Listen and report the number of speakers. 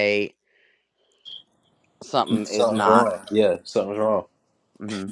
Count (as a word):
two